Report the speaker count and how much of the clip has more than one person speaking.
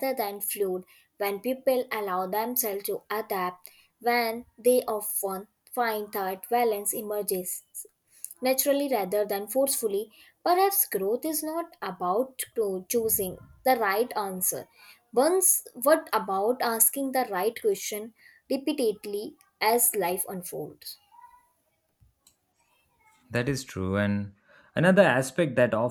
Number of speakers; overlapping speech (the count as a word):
two, no overlap